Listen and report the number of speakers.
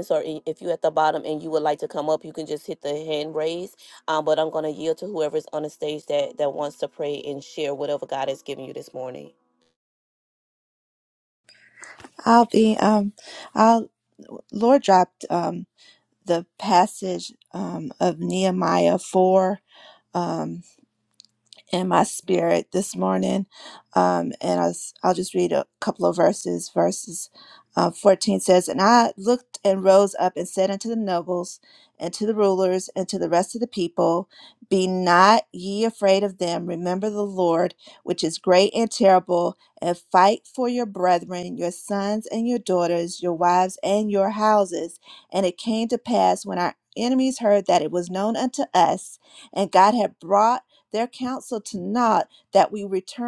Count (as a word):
two